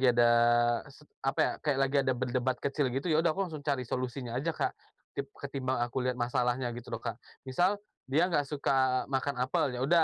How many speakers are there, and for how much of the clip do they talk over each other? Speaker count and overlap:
one, no overlap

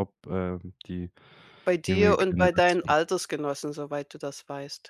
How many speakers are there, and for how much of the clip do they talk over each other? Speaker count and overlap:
two, about 22%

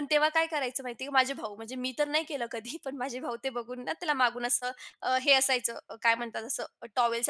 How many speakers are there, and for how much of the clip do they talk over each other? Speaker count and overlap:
one, no overlap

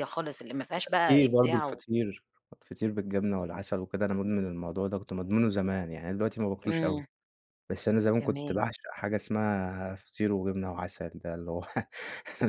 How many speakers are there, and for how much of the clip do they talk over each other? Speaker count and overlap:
two, about 12%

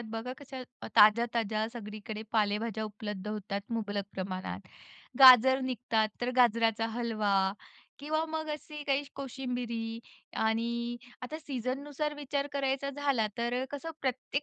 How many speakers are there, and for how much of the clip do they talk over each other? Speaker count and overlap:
one, no overlap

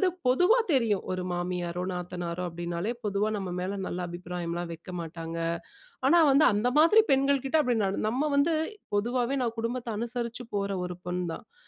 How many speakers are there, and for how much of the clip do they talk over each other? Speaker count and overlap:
one, no overlap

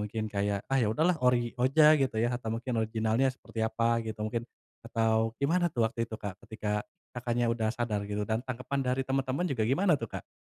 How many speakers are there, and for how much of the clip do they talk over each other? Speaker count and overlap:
one, no overlap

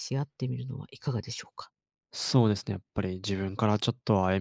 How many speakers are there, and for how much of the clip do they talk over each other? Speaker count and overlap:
two, no overlap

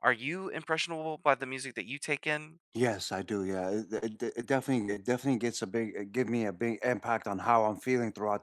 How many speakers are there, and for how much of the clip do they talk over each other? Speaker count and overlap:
two, no overlap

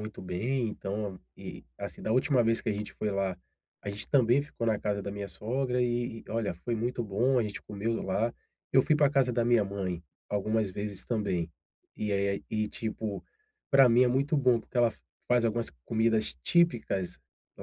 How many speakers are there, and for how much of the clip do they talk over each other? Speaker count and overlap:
one, no overlap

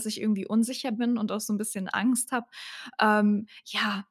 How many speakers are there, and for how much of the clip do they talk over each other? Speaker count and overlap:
one, no overlap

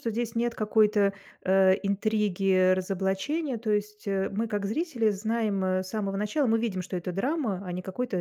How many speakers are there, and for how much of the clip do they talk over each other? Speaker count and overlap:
one, no overlap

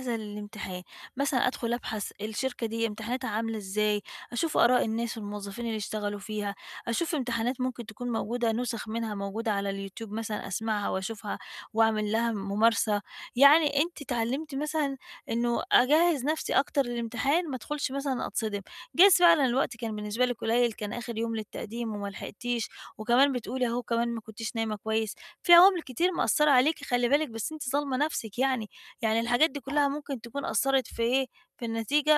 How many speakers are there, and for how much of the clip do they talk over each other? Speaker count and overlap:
one, no overlap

